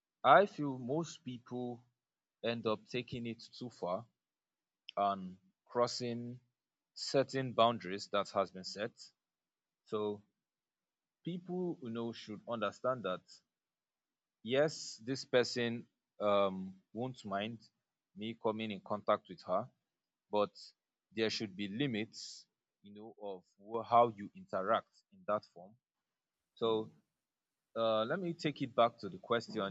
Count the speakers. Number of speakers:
one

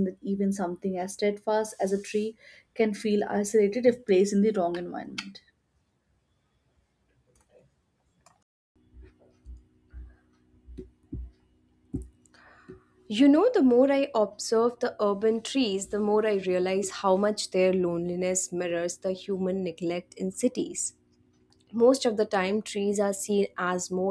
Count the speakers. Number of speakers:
two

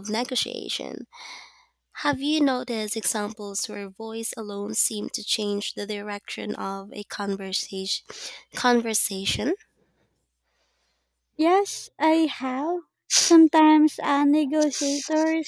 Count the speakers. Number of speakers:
two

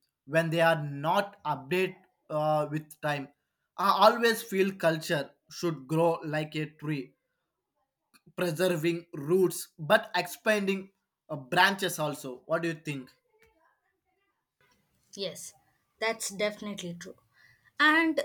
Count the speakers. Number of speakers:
two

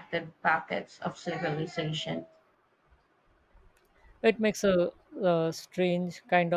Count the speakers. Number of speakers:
two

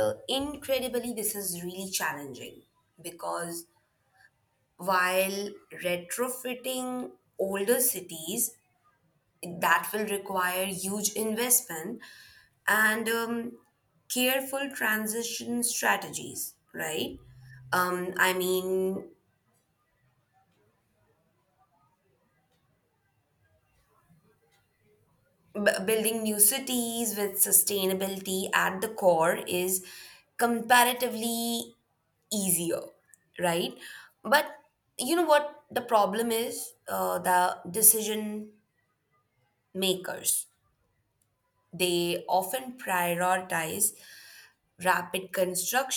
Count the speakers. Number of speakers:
one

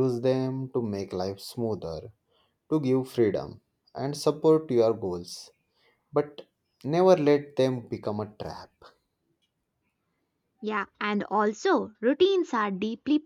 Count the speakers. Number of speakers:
two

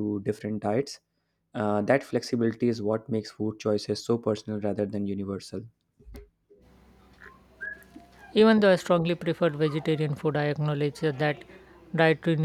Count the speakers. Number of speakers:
two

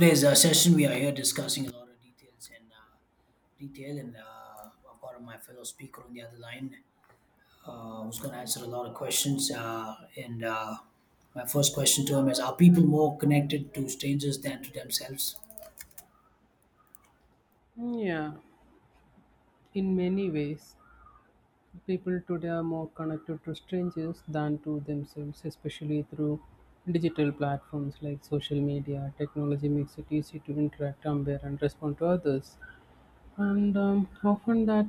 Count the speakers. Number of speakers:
two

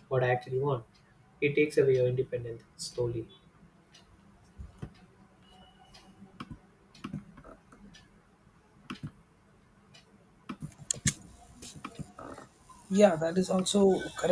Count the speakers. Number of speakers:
two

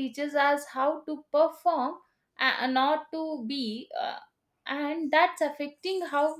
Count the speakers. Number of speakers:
one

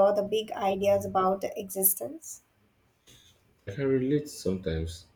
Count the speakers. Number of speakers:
two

